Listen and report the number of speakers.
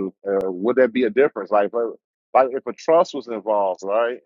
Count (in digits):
1